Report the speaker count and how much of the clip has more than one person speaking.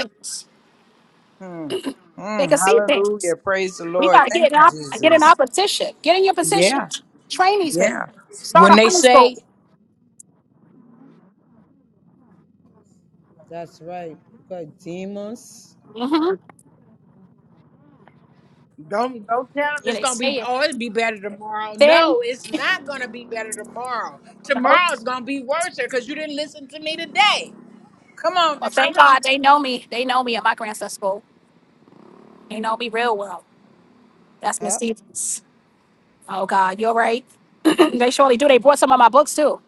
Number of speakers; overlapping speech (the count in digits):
3, about 13%